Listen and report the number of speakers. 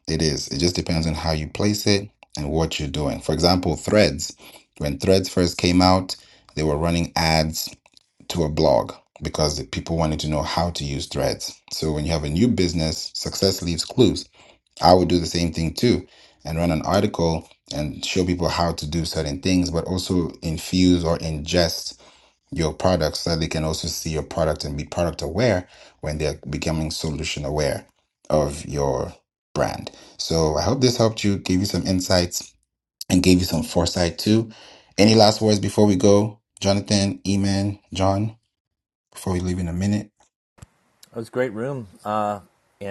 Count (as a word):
two